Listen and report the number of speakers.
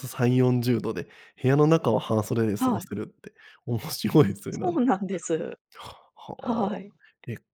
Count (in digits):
2